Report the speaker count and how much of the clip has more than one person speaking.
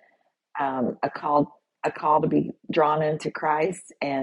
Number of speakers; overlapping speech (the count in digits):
1, no overlap